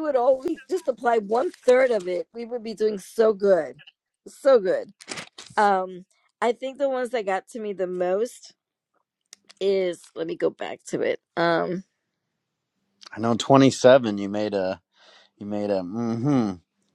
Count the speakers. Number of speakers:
2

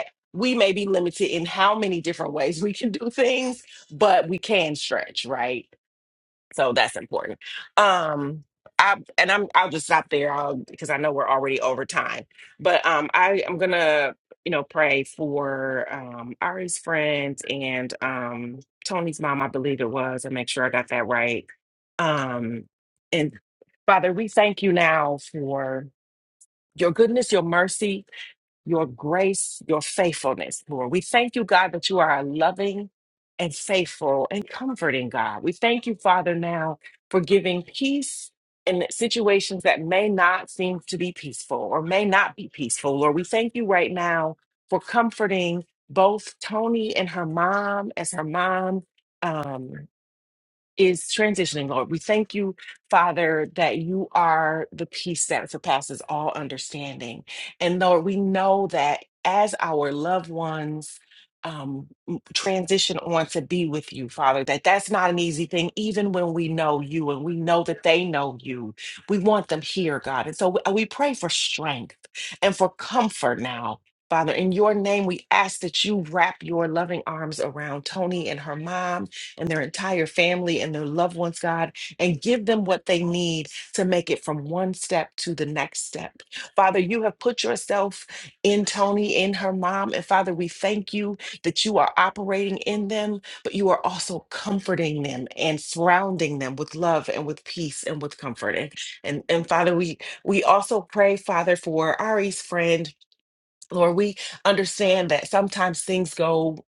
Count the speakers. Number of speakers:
1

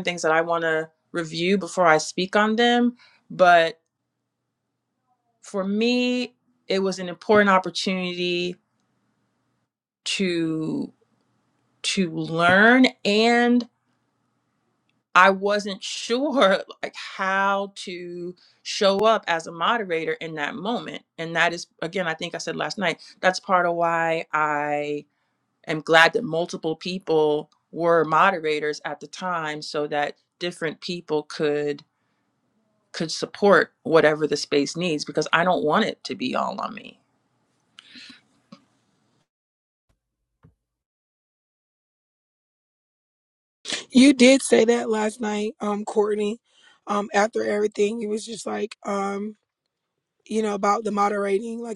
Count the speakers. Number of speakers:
2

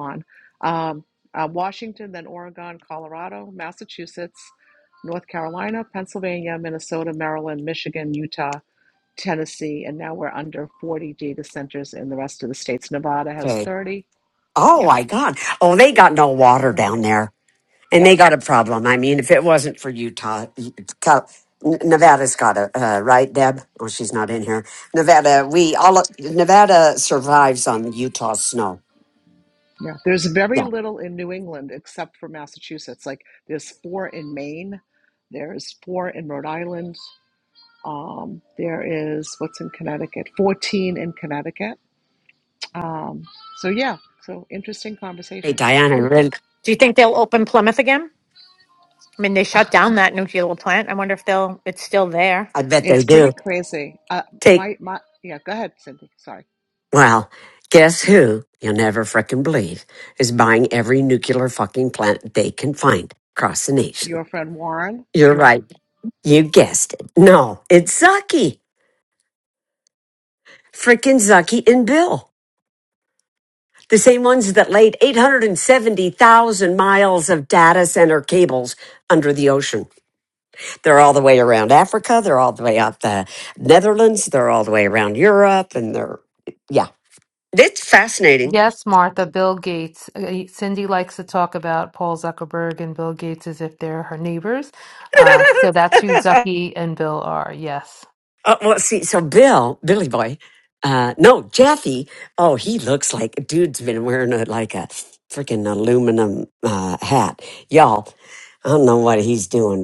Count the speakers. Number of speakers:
4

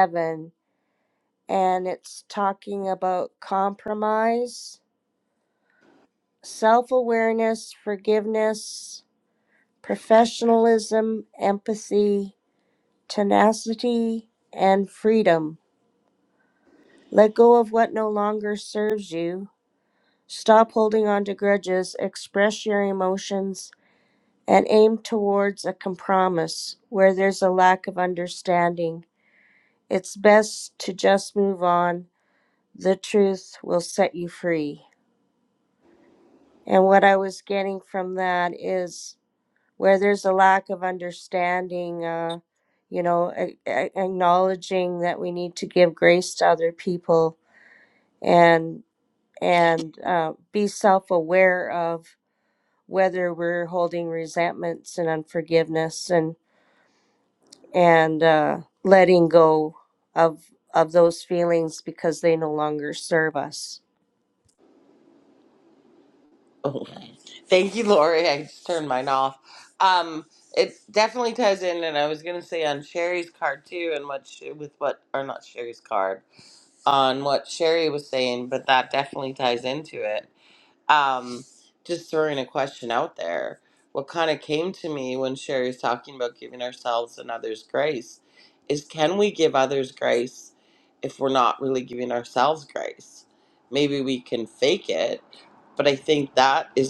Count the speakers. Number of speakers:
2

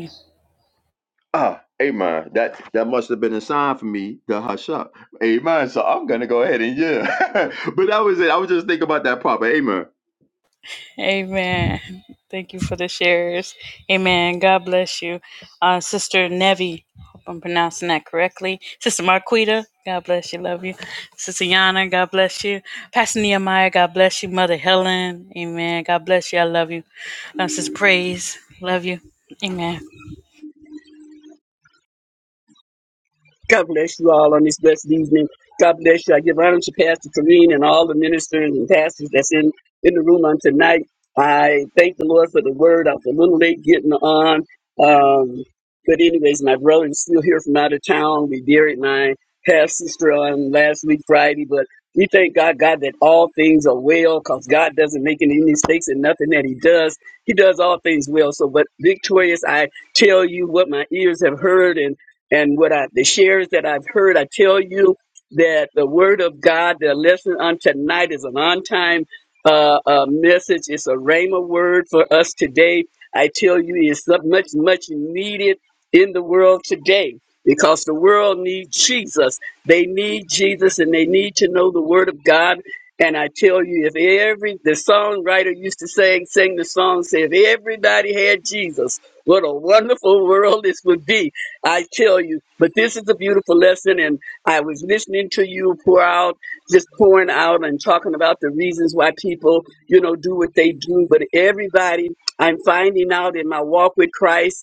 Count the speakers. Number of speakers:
3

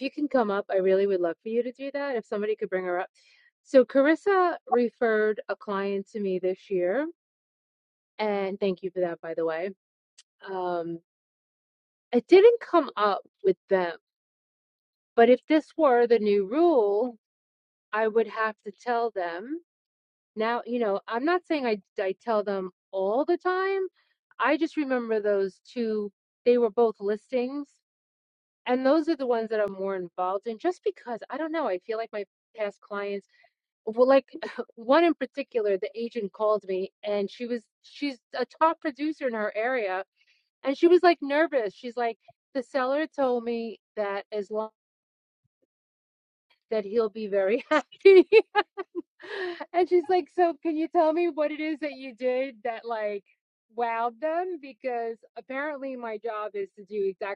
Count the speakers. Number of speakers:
1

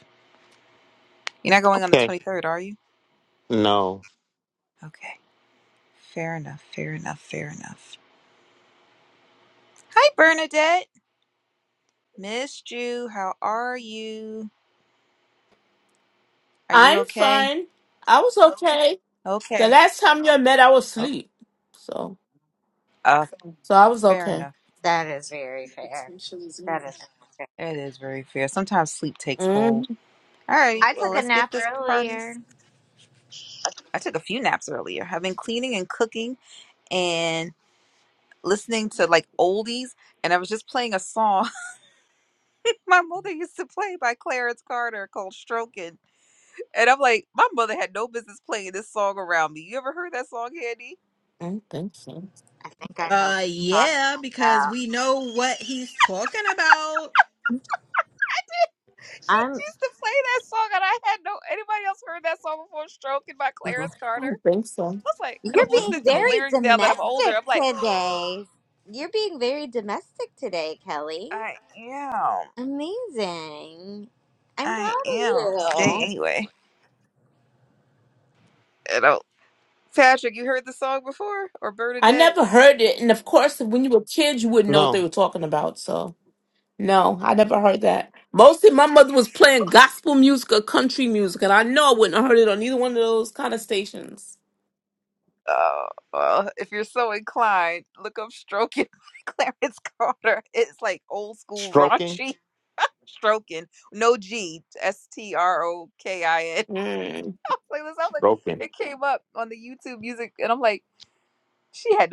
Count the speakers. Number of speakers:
5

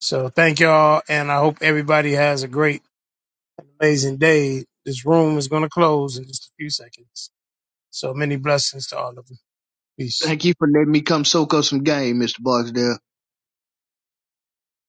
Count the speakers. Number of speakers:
2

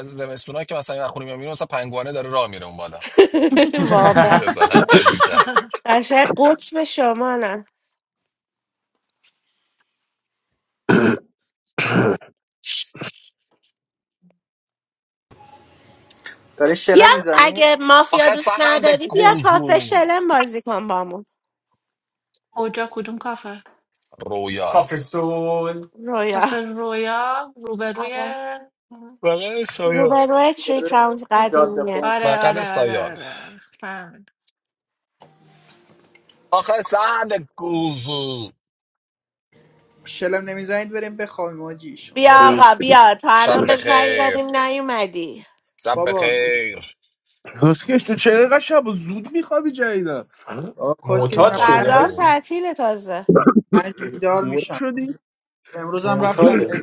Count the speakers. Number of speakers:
6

